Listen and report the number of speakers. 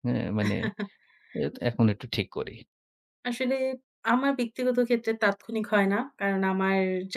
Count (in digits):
2